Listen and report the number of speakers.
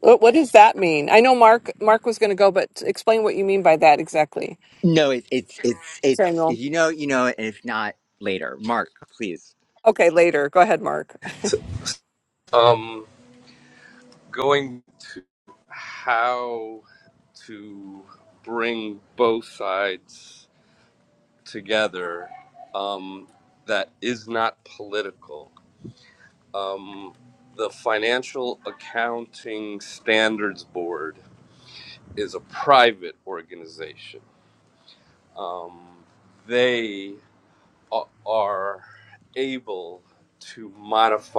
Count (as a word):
three